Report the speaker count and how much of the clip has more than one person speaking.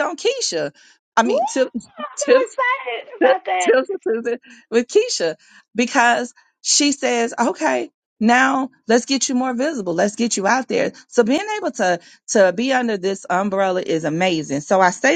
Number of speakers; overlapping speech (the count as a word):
two, about 3%